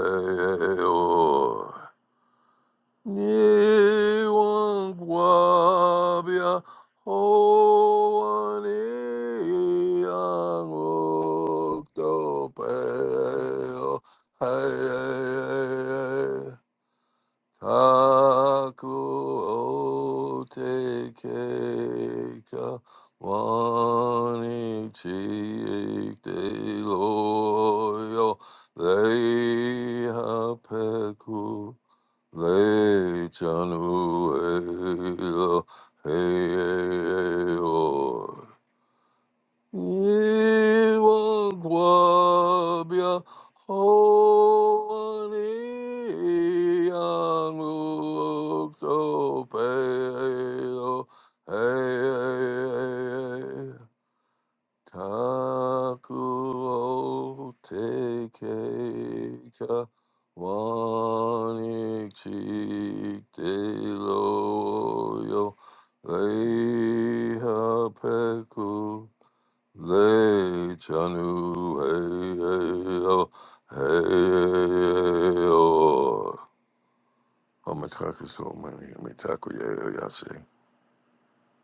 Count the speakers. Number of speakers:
one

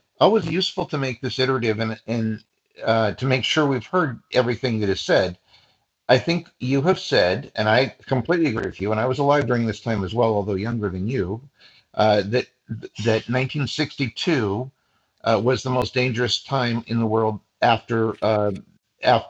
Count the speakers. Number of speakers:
one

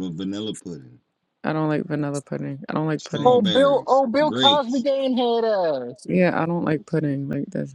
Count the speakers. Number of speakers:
three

